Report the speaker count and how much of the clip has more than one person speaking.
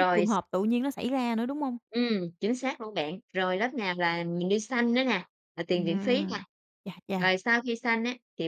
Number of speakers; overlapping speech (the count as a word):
two, about 12%